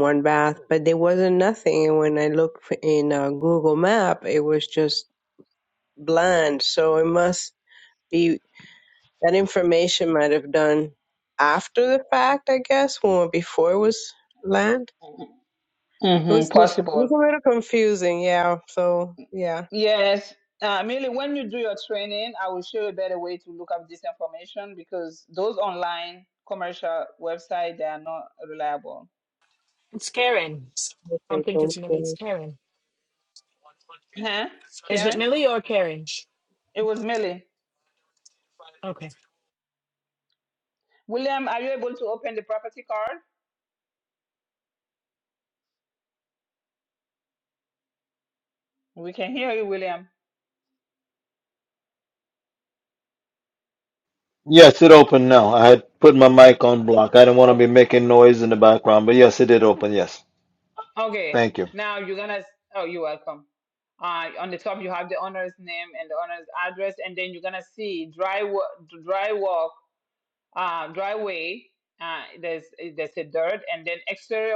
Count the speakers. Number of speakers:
four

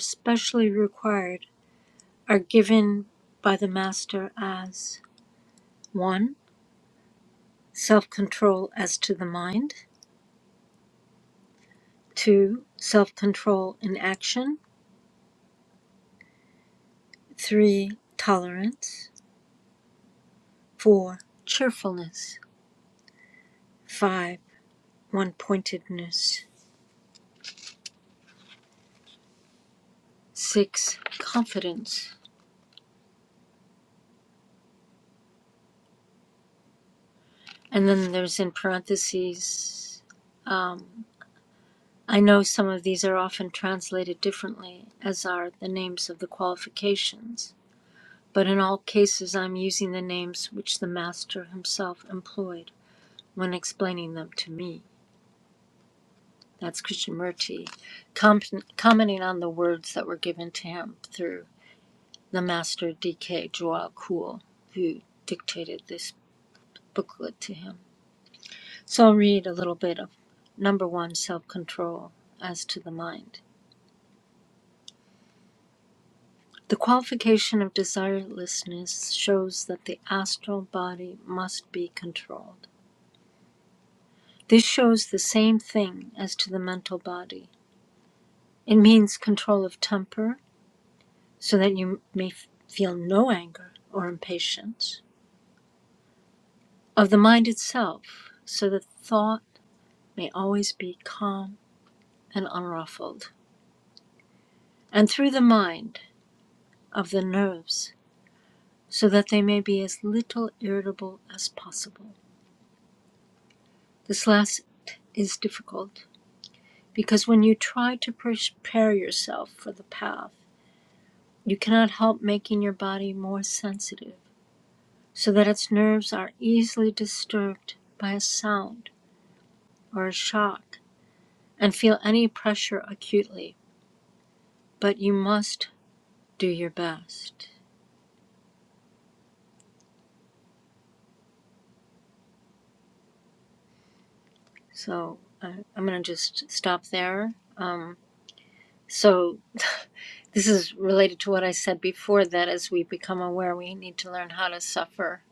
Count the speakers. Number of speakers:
one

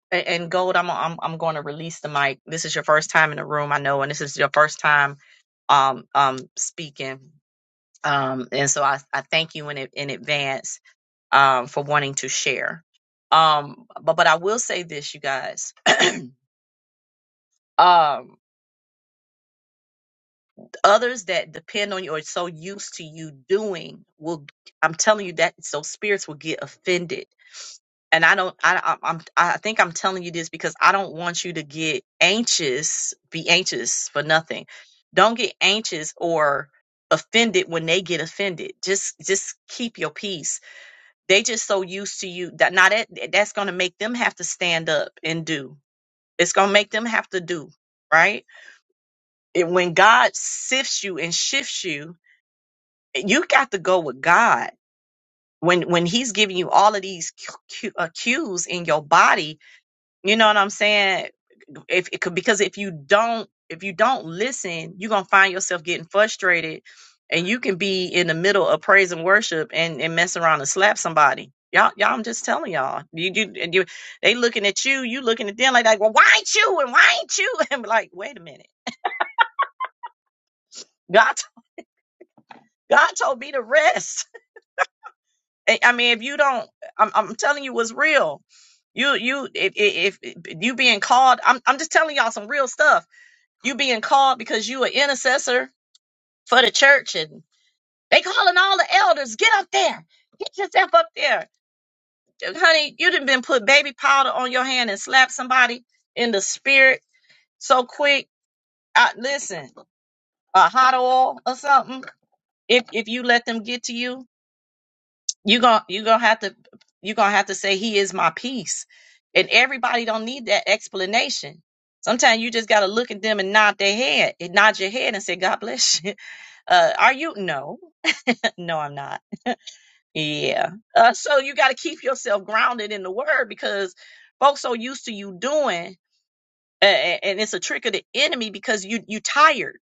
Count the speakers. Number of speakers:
one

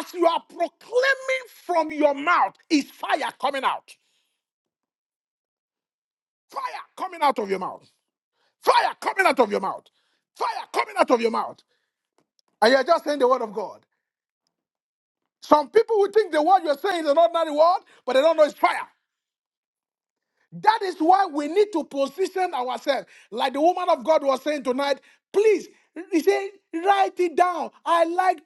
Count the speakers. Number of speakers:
one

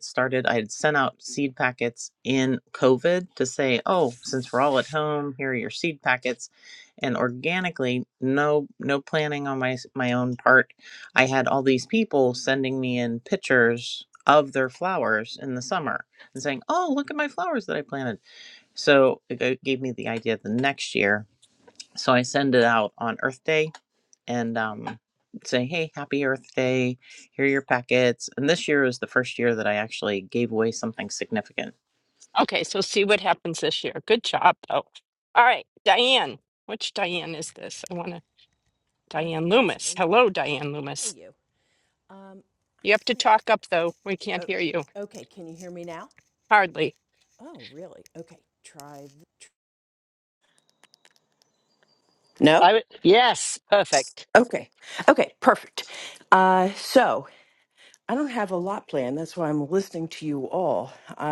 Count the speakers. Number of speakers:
four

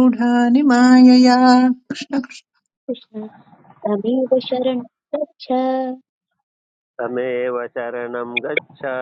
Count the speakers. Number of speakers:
three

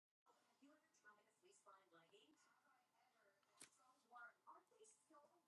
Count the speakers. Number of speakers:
zero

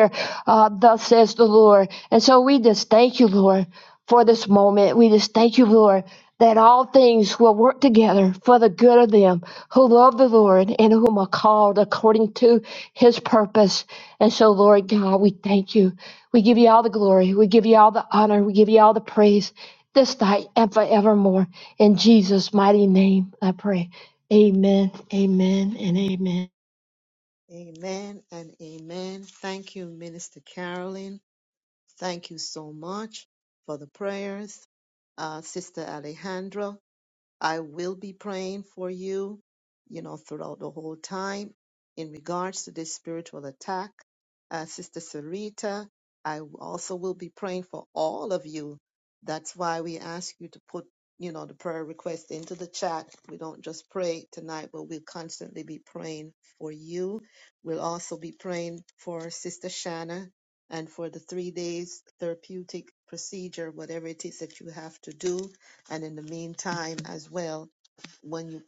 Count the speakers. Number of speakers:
two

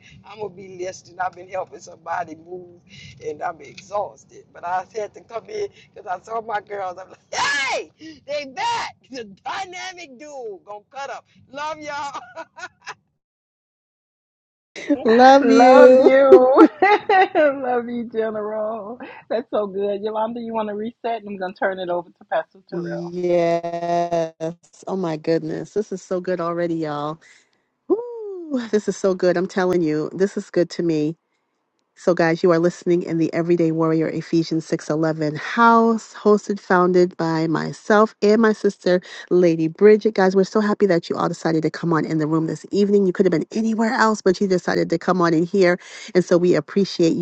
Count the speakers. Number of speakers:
three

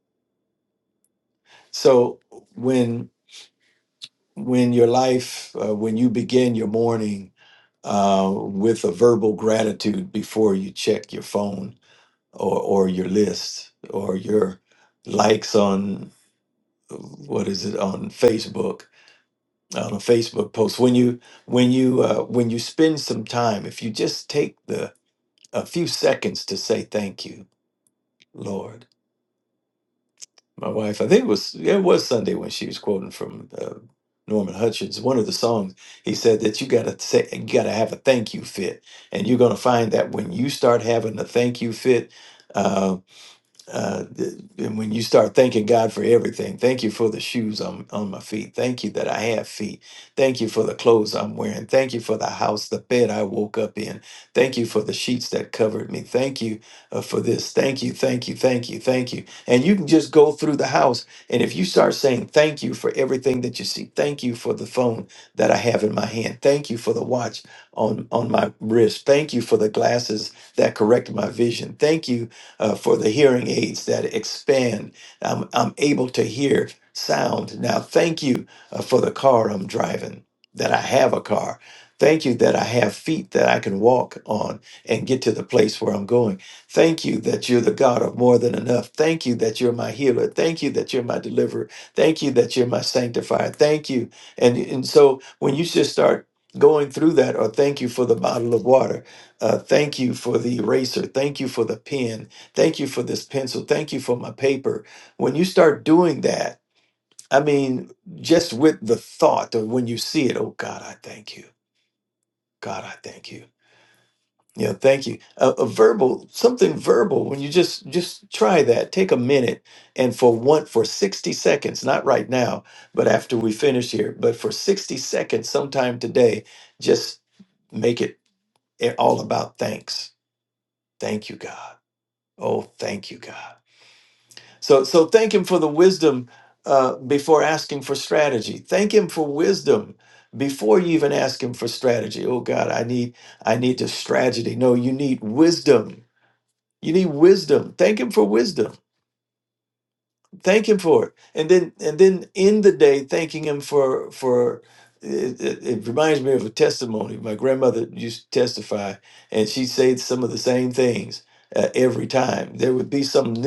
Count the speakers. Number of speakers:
one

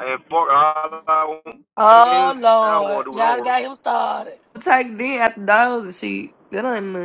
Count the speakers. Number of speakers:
three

